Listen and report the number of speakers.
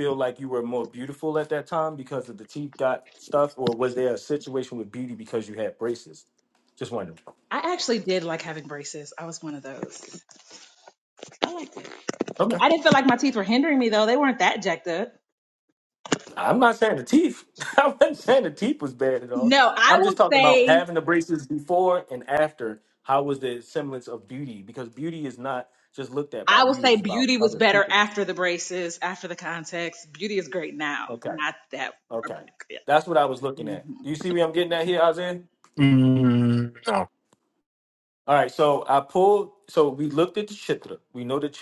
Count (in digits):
3